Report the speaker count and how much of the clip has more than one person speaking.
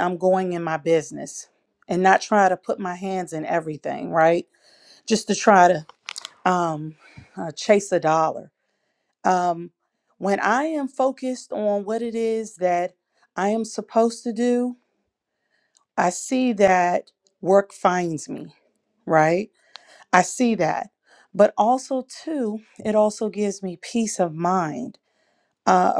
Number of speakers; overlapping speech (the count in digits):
1, no overlap